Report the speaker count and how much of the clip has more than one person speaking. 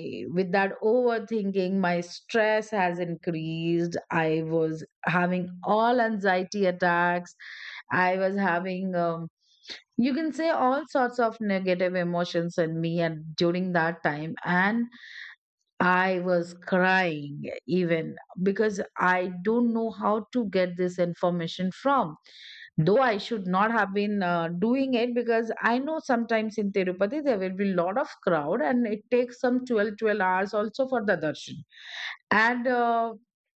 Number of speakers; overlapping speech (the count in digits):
1, no overlap